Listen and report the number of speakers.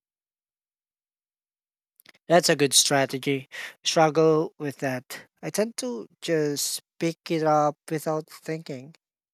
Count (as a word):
one